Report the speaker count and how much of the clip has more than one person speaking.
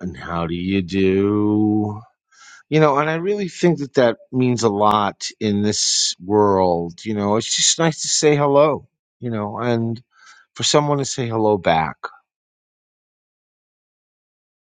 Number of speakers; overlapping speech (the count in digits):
1, no overlap